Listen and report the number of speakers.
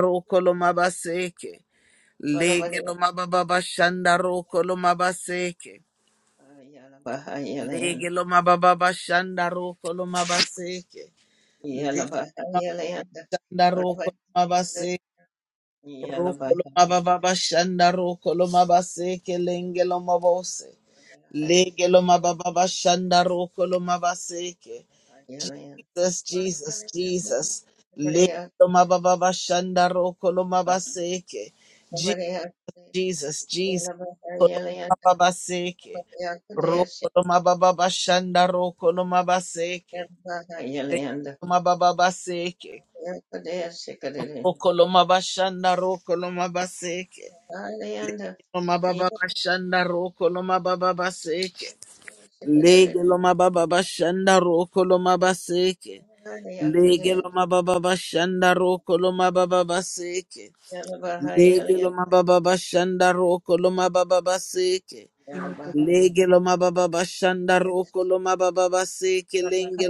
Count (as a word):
two